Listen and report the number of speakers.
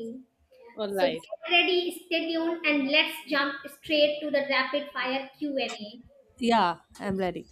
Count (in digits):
2